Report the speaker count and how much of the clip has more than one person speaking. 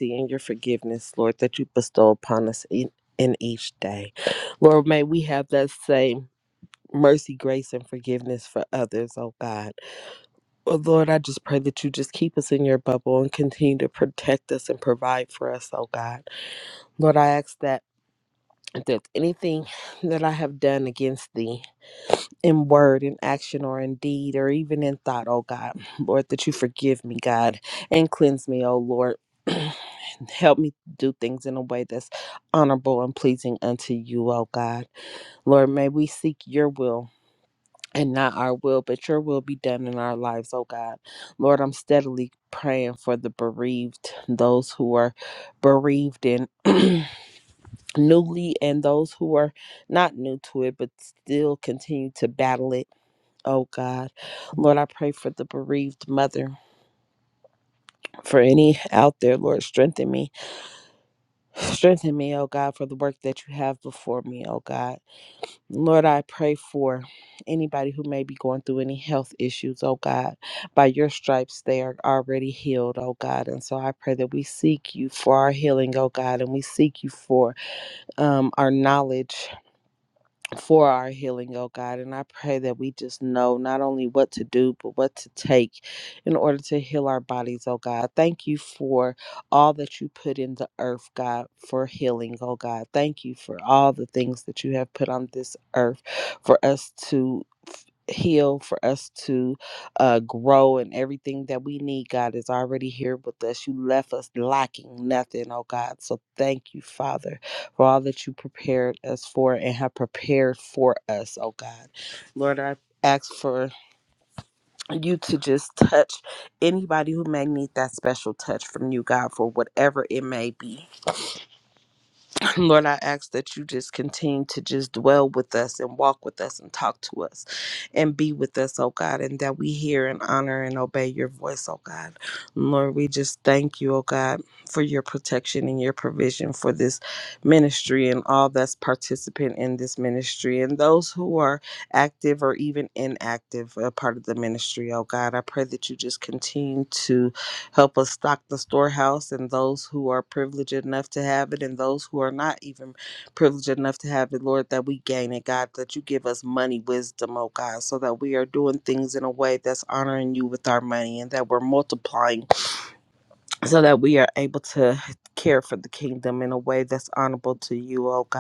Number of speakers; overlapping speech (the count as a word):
one, no overlap